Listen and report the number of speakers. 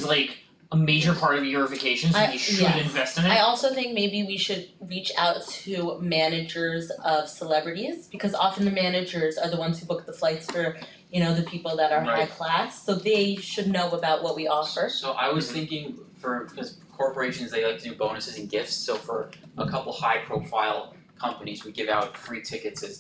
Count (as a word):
three